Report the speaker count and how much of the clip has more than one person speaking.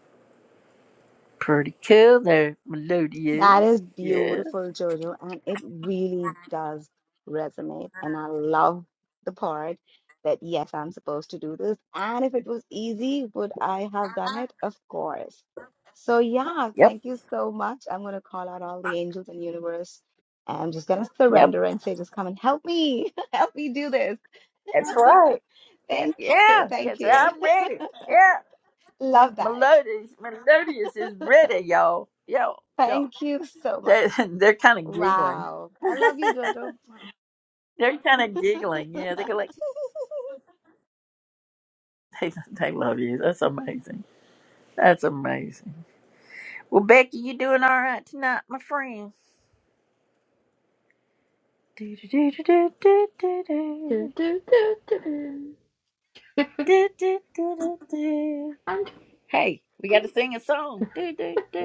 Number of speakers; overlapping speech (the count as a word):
three, about 6%